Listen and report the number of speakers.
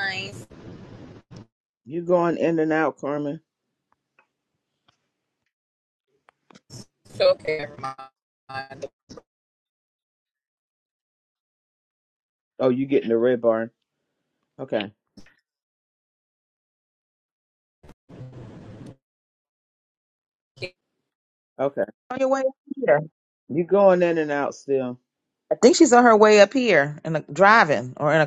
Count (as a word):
three